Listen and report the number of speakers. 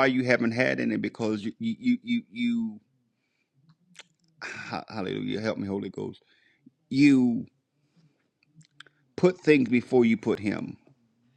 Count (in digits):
1